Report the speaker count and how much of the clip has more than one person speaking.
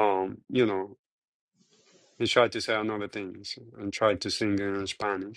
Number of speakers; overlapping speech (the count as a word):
one, no overlap